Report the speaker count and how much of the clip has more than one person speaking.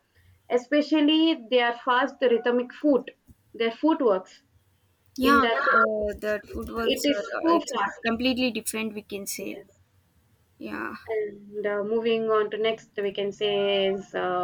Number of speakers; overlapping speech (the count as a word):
two, about 18%